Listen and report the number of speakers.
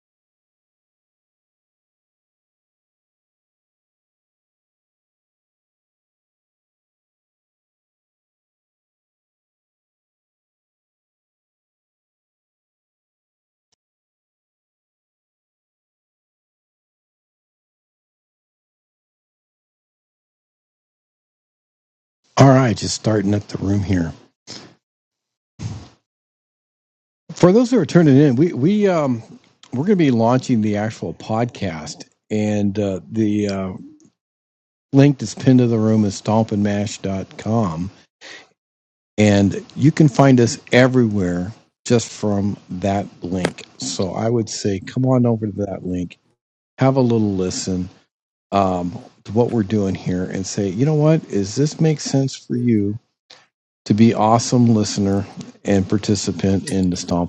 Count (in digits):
1